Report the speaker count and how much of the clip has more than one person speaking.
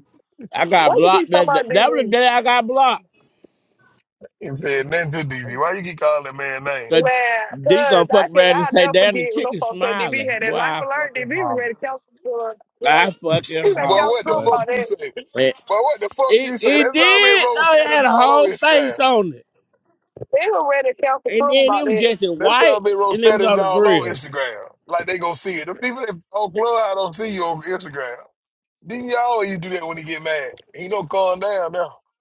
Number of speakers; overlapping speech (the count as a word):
three, about 37%